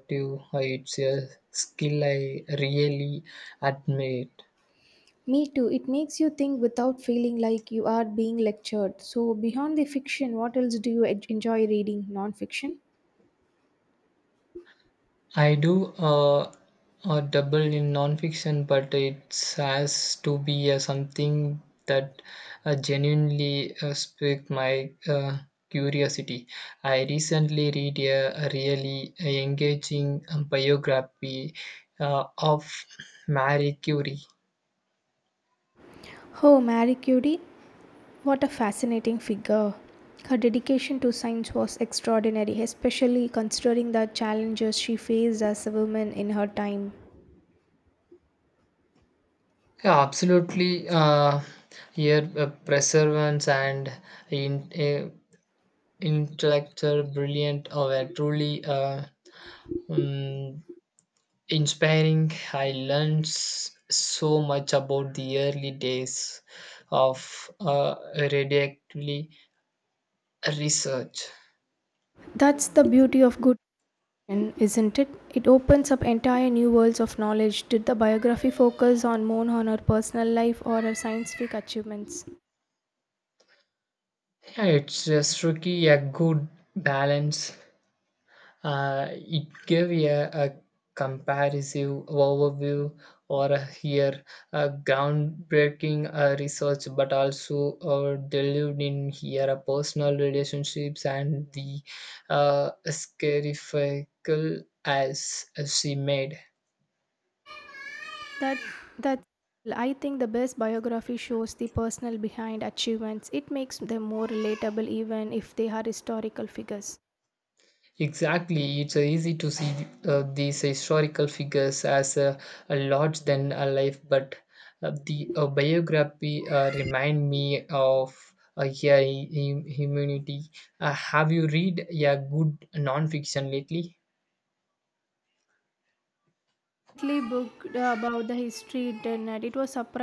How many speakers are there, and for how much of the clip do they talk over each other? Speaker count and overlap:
2, no overlap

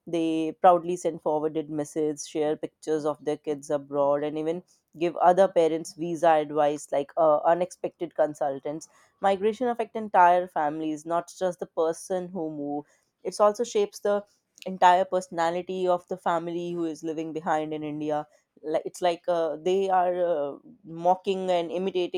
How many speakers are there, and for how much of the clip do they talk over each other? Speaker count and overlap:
1, no overlap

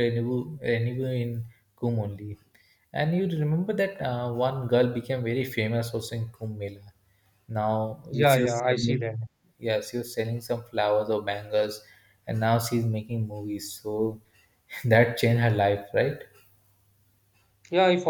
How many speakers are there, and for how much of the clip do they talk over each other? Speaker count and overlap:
2, about 5%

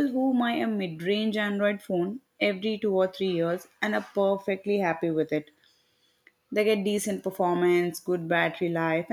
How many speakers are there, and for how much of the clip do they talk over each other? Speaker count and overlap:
1, no overlap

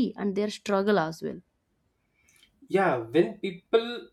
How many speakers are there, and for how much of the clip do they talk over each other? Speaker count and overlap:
2, no overlap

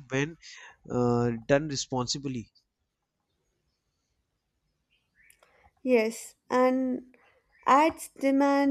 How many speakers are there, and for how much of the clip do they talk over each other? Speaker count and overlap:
2, no overlap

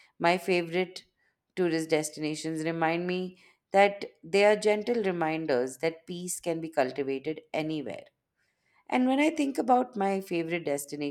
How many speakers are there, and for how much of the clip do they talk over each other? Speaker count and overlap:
1, no overlap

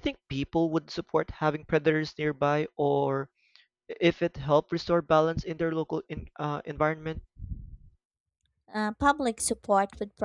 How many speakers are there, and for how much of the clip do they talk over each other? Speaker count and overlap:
2, no overlap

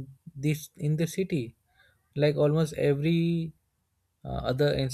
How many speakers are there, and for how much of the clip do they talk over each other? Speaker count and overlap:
1, no overlap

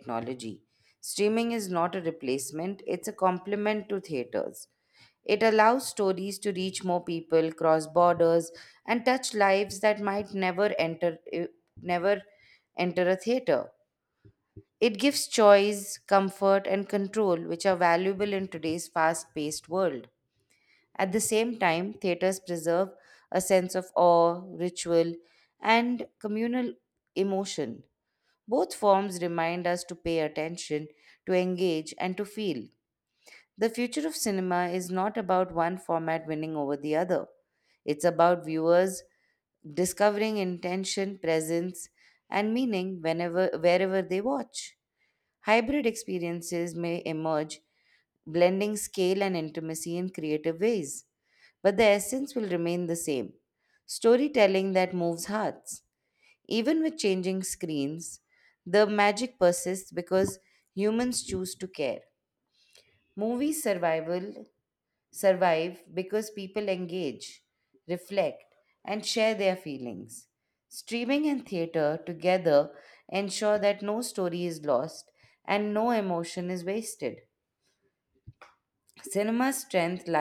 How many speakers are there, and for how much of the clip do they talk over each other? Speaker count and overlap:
1, no overlap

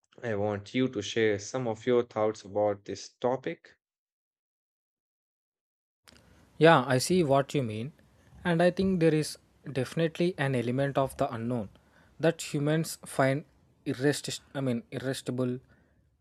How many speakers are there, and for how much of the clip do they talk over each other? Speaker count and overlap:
2, no overlap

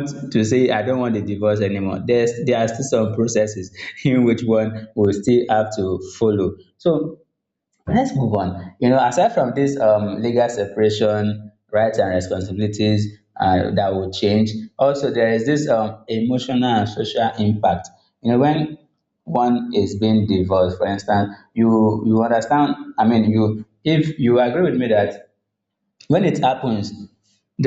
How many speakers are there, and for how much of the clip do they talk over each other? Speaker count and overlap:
1, no overlap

